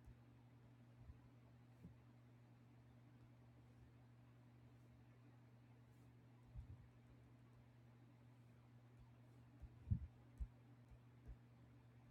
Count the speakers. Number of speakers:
zero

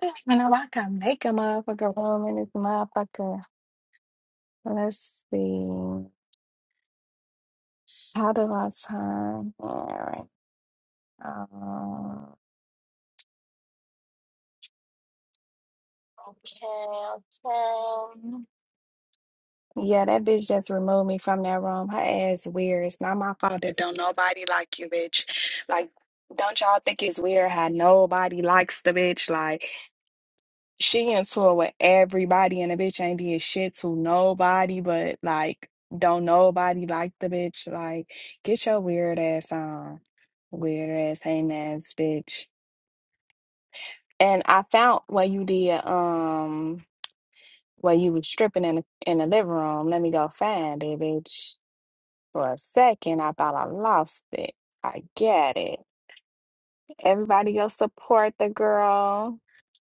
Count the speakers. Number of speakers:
one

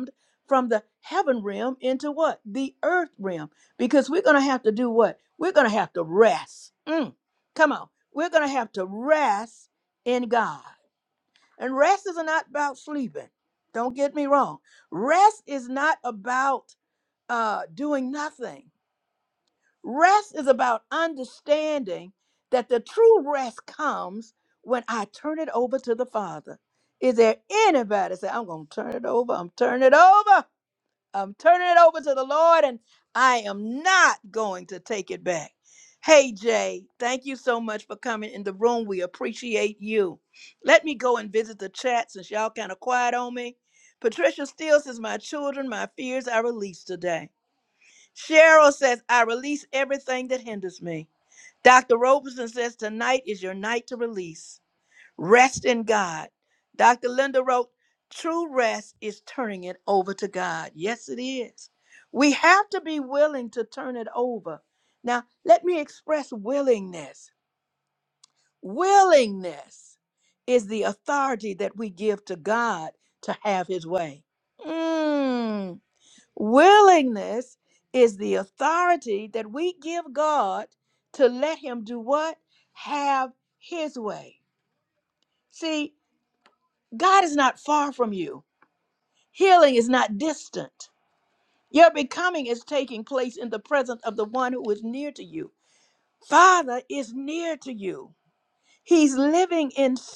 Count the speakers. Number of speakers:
one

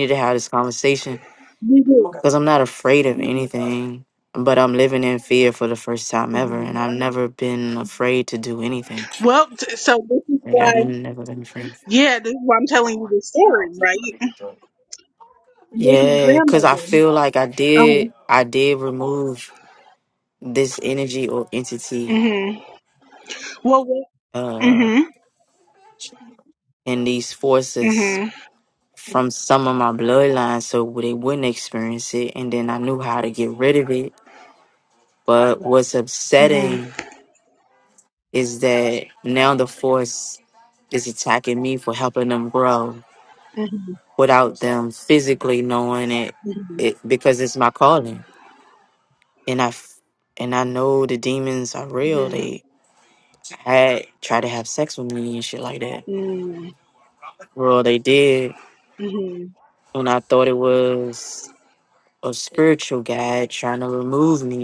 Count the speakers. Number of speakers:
two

